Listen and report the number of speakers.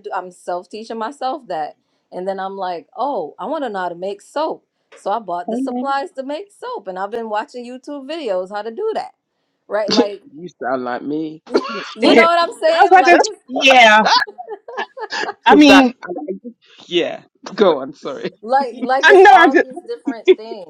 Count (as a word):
three